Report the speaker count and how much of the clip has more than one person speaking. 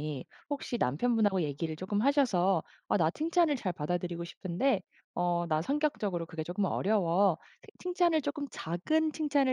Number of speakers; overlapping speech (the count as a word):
one, no overlap